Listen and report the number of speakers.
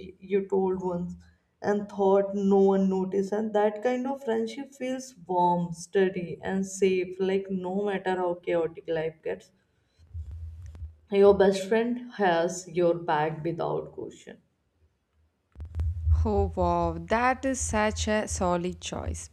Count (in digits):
2